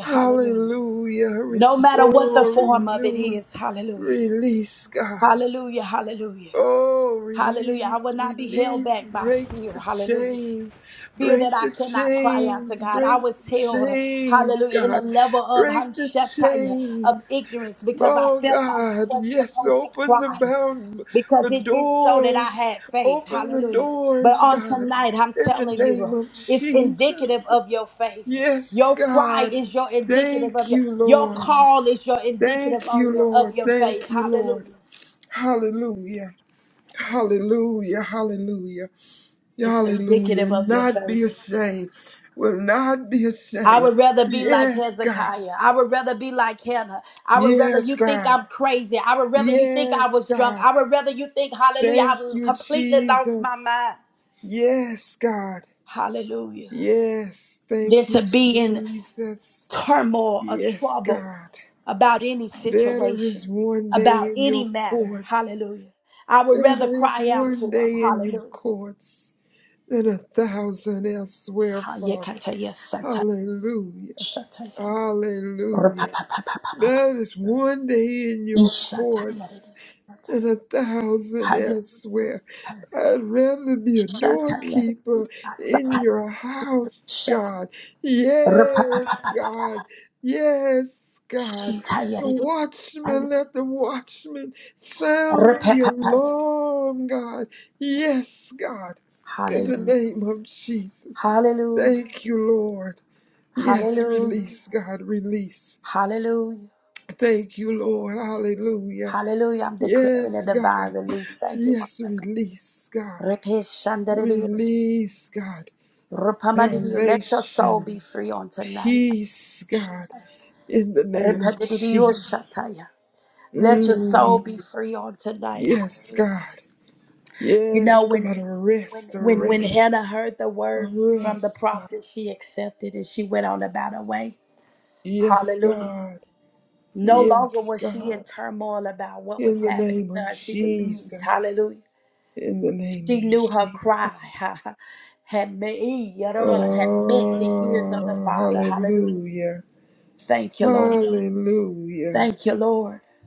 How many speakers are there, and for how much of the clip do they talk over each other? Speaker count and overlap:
2, about 37%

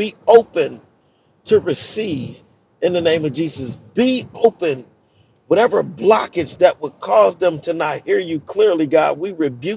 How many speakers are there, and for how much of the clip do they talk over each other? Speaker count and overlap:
1, no overlap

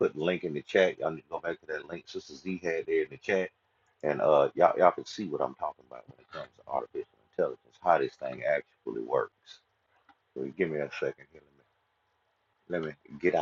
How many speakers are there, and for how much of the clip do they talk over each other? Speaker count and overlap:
1, no overlap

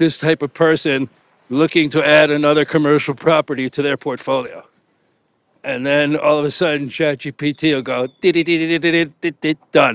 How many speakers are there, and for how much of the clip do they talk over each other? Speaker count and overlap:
1, no overlap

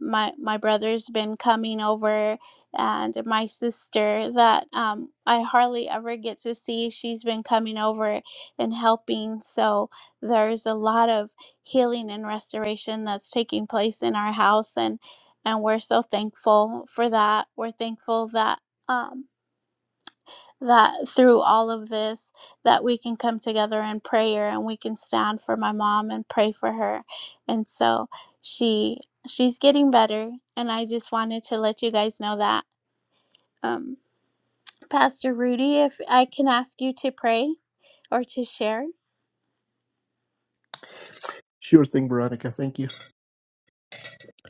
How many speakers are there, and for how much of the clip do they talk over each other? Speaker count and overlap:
2, no overlap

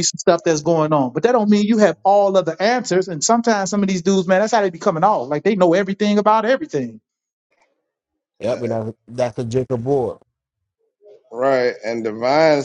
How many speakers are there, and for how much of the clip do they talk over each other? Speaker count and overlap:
3, about 1%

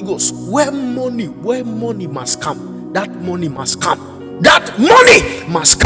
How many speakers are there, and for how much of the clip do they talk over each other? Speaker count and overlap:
1, no overlap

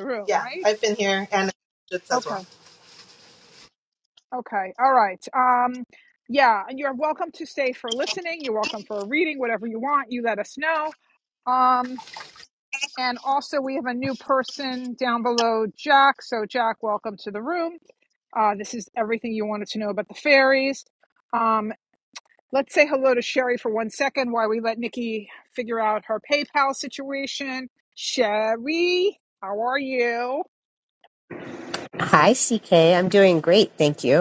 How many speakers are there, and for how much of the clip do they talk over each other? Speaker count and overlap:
3, about 2%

